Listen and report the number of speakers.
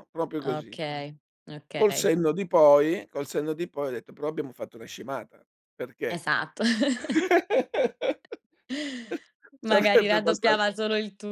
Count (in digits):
2